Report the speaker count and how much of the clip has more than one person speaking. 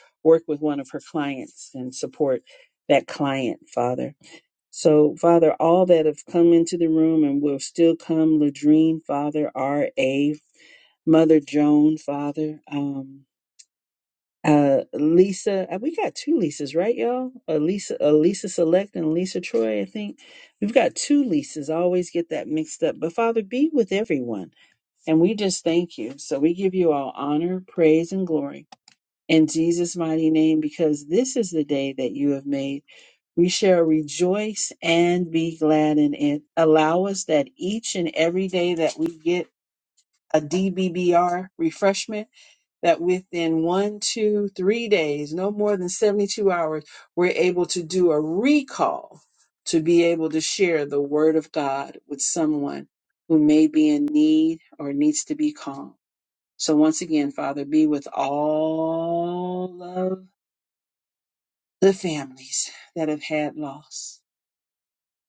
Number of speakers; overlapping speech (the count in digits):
1, no overlap